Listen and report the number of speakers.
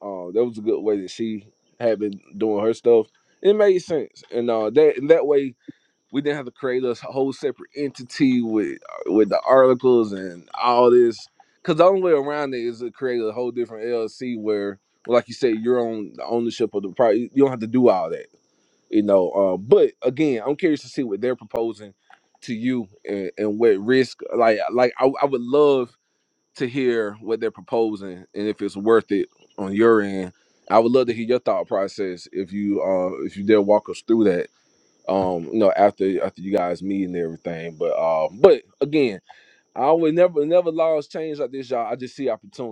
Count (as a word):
one